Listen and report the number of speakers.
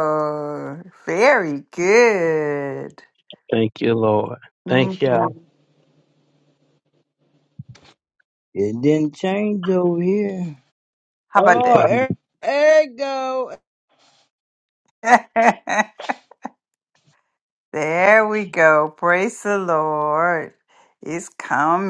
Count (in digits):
3